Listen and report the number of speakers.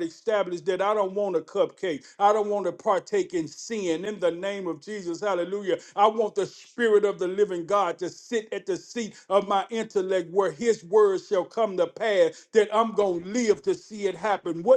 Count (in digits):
1